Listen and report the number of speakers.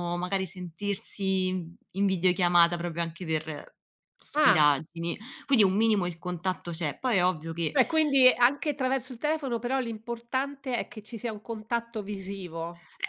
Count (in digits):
2